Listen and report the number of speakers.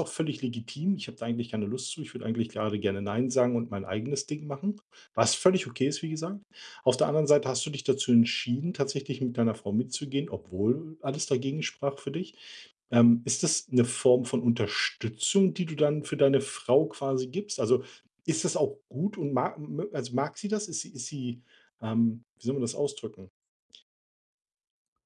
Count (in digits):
1